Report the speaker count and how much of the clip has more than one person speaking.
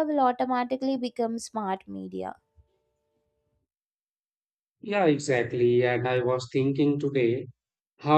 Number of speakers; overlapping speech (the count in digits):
2, no overlap